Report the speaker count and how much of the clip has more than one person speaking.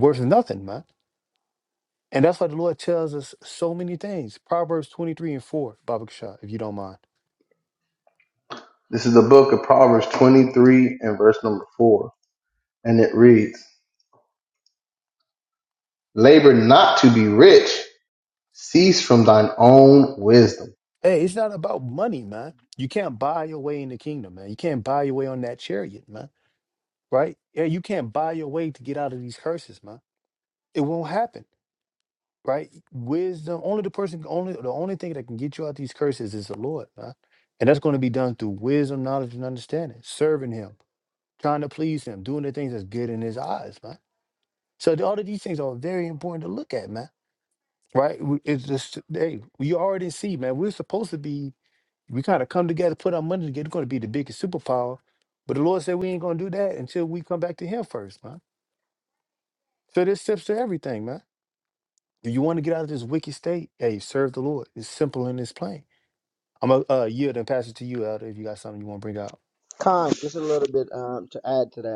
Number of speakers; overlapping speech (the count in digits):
3, no overlap